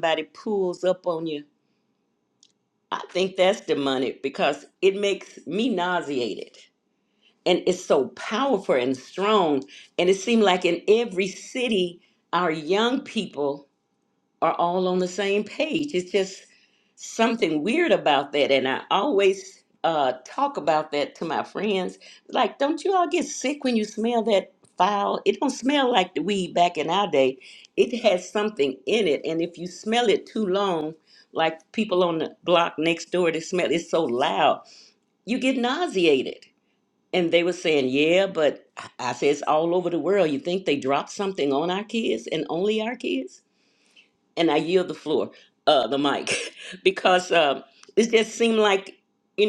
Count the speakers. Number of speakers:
1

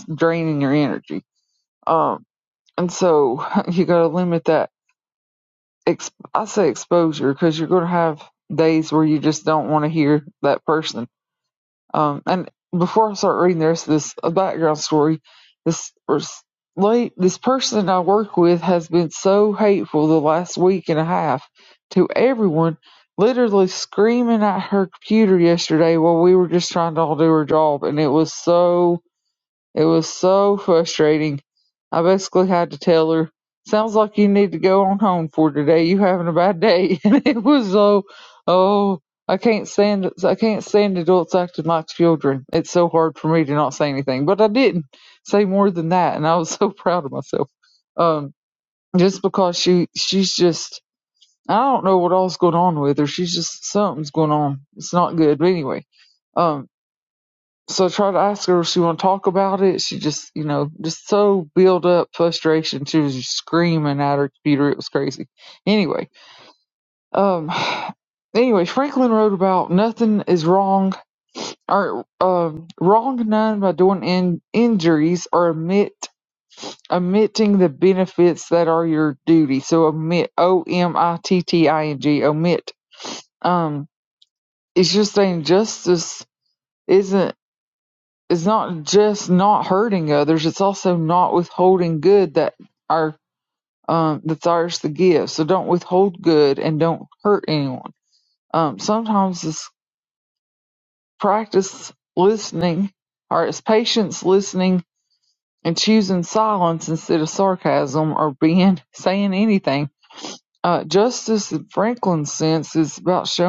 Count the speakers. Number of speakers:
1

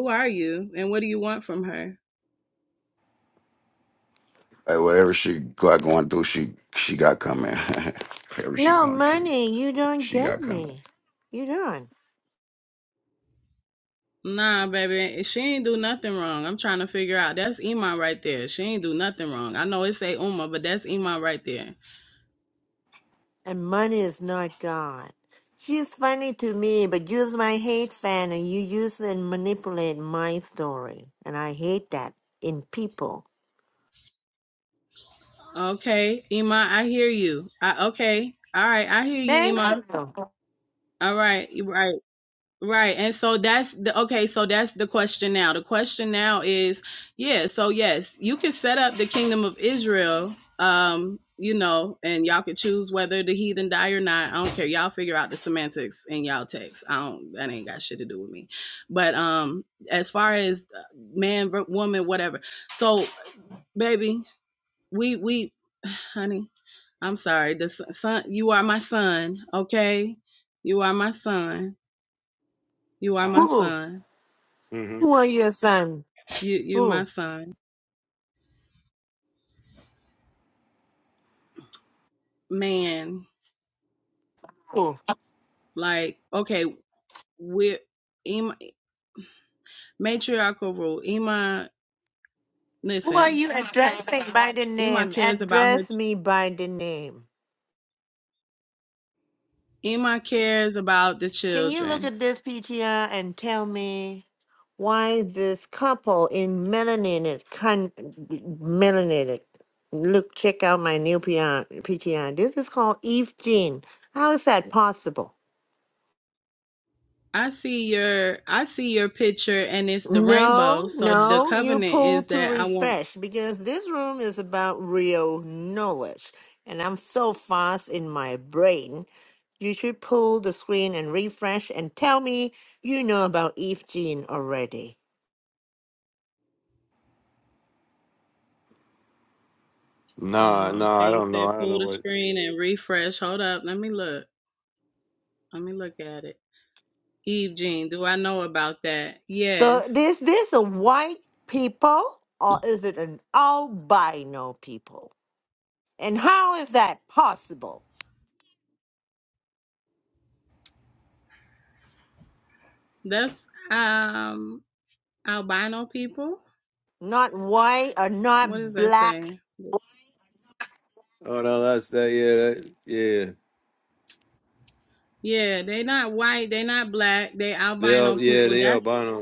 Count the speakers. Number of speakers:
4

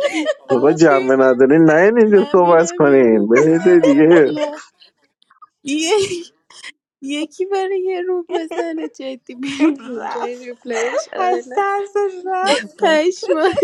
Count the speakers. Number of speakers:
3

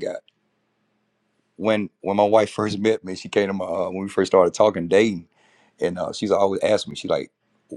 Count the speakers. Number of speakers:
1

